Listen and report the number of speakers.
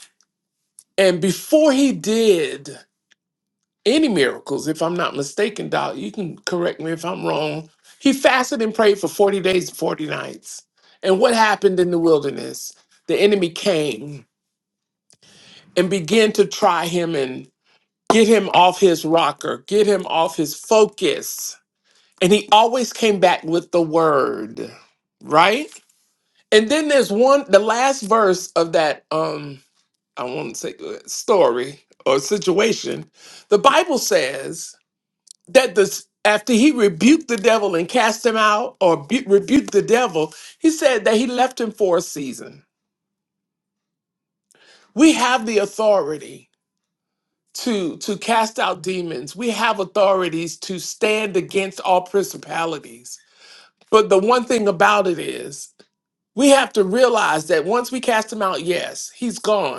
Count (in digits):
1